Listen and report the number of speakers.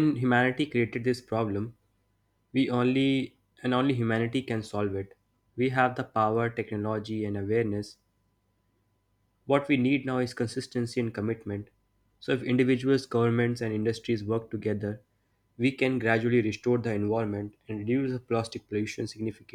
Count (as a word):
one